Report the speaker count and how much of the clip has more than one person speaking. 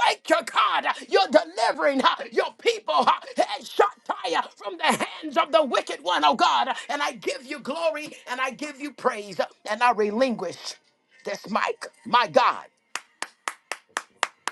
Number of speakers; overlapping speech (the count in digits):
1, no overlap